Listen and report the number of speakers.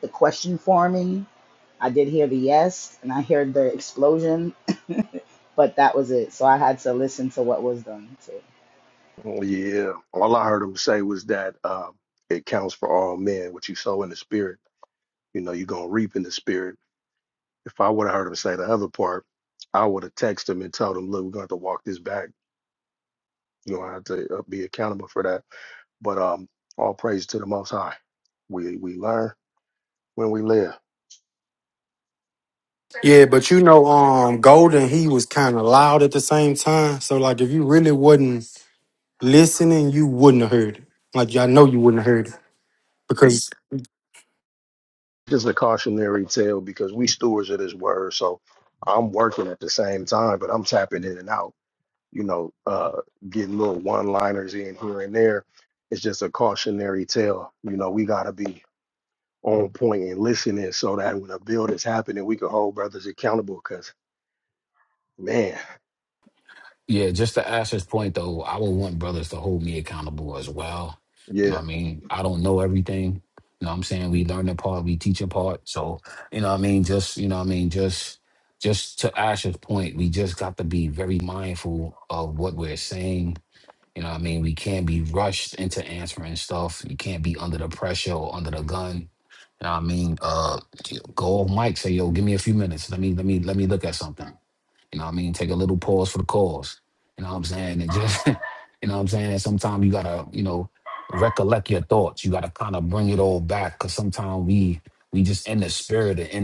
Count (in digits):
4